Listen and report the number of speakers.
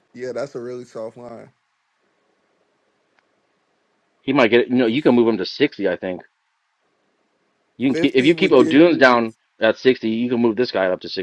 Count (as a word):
two